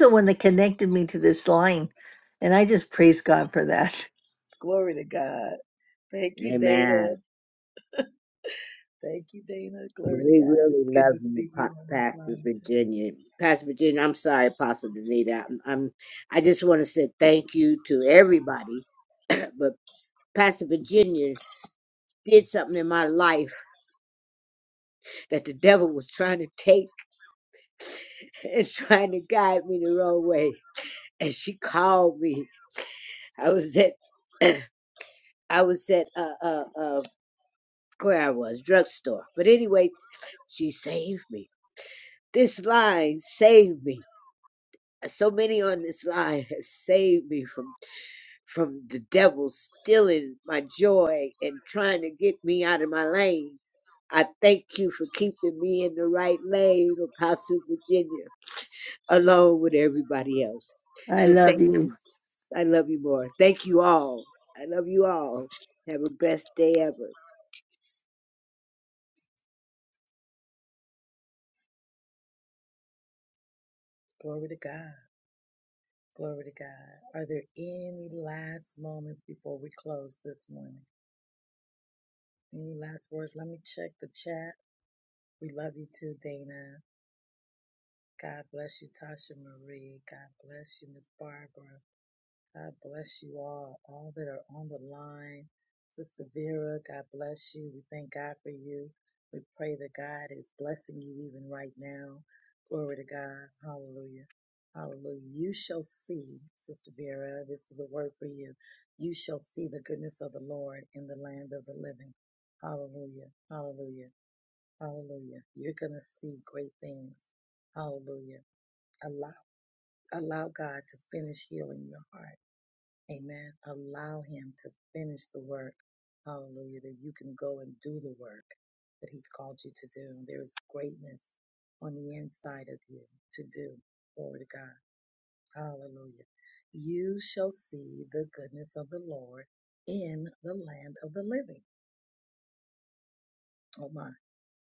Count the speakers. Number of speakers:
3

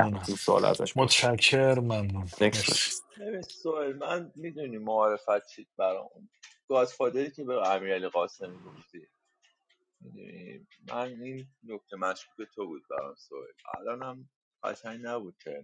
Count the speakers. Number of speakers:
3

